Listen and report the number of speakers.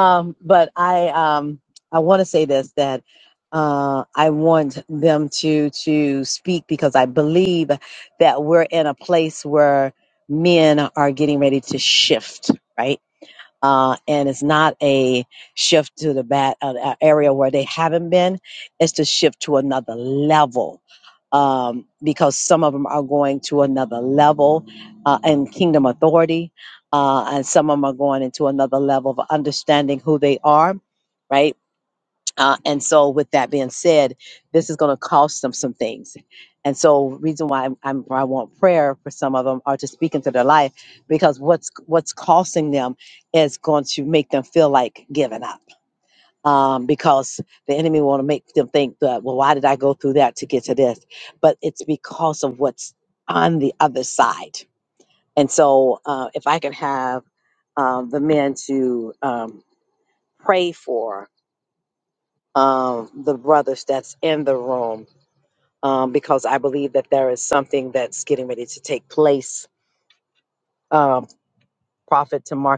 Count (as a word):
one